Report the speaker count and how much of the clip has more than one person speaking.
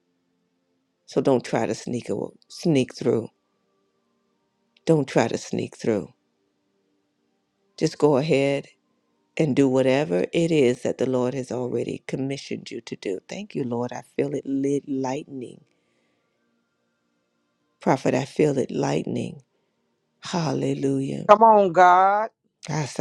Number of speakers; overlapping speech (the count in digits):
2, no overlap